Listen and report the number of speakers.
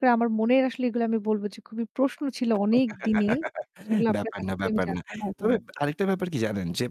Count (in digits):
2